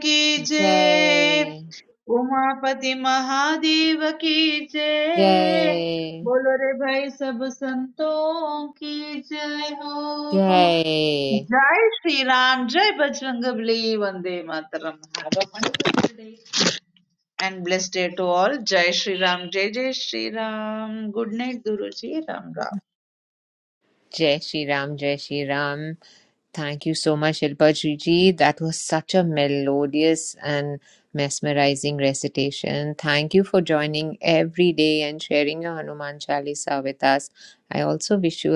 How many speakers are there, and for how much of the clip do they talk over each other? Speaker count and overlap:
2, about 5%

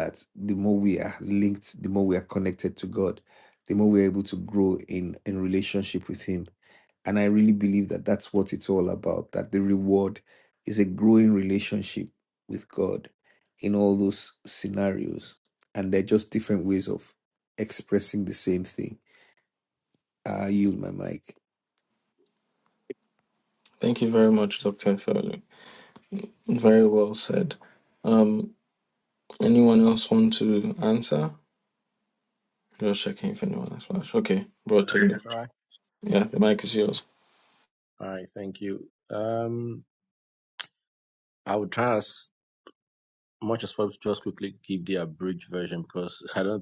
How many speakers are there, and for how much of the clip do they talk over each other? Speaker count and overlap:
3, about 1%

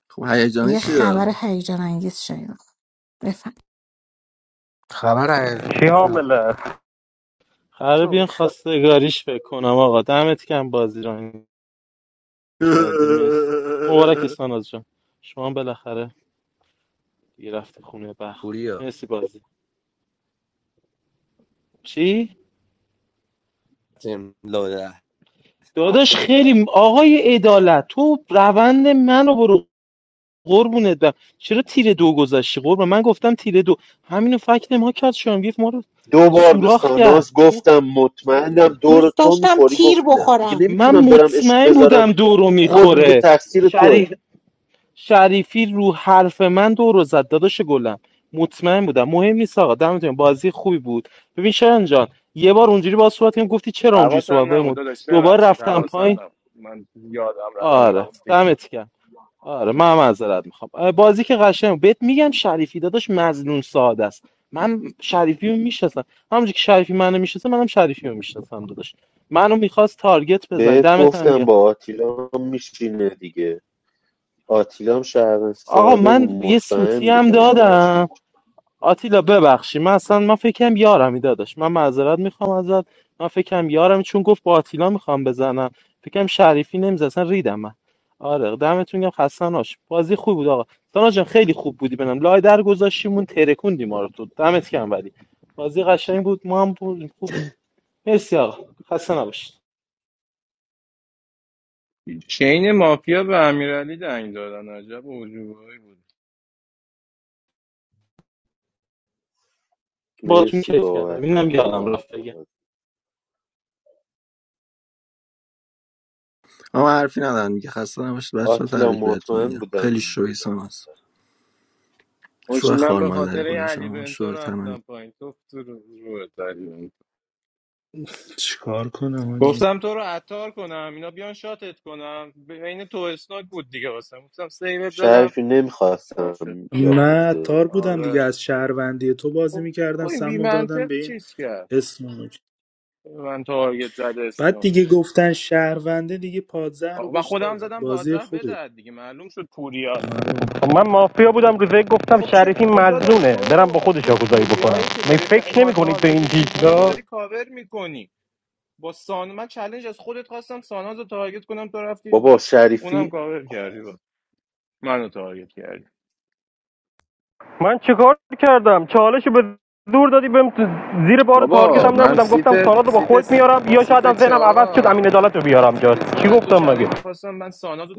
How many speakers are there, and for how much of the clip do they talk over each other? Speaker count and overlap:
8, about 18%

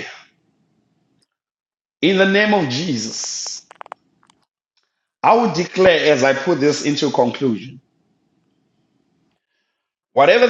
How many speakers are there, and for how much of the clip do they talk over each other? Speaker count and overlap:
1, no overlap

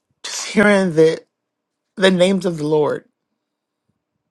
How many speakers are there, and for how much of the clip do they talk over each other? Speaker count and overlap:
1, no overlap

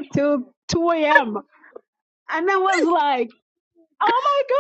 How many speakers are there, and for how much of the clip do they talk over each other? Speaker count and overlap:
1, no overlap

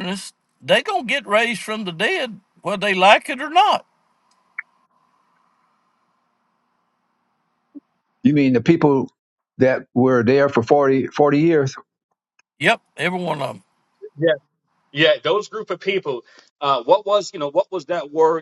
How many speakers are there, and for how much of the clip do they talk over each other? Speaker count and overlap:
3, no overlap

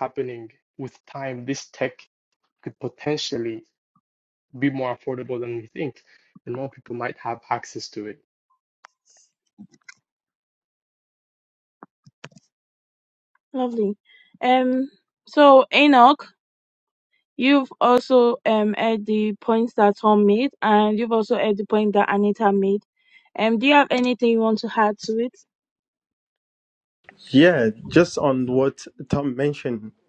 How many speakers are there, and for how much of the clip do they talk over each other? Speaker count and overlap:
3, no overlap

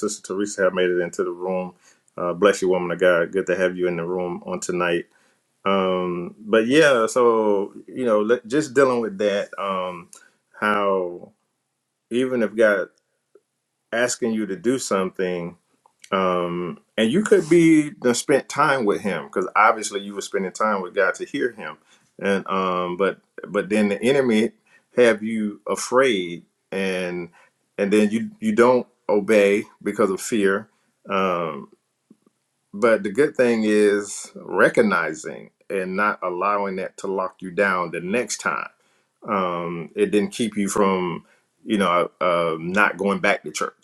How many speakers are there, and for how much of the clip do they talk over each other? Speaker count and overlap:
1, no overlap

